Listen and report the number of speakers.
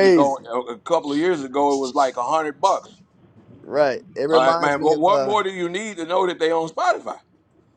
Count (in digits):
2